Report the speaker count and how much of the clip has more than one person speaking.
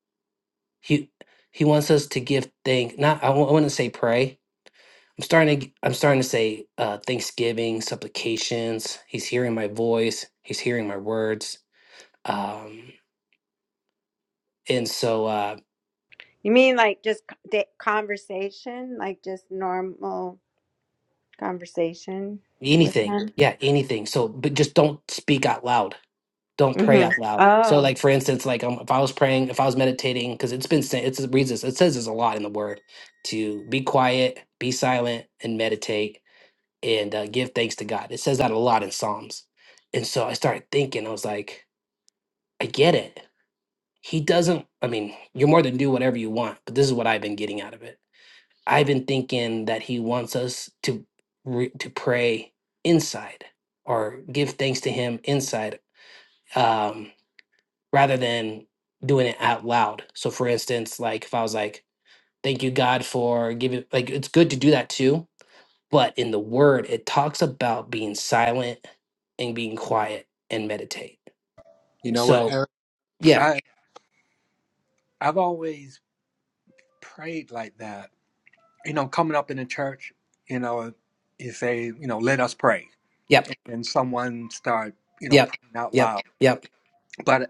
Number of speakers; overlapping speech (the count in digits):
3, about 3%